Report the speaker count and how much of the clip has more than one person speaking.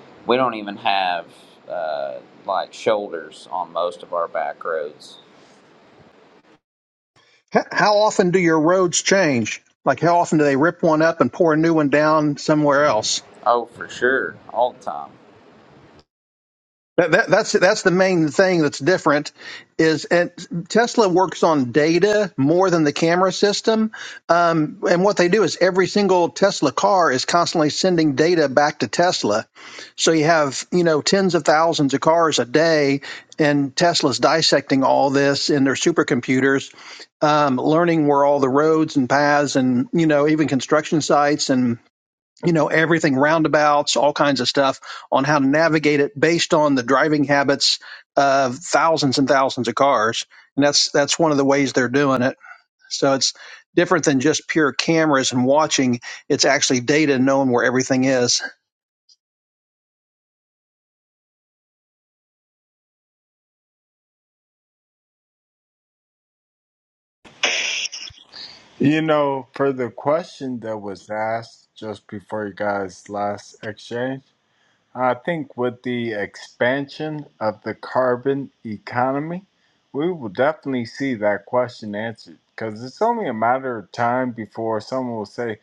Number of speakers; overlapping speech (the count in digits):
3, no overlap